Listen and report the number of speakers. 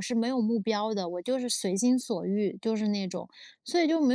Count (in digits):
1